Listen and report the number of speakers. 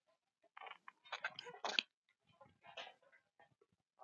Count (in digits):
0